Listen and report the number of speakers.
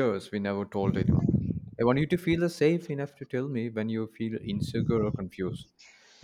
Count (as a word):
one